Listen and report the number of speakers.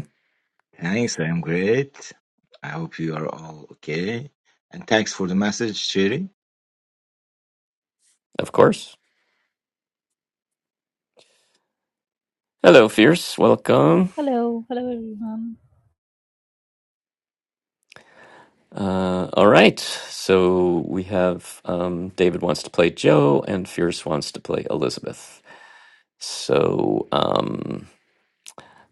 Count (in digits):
3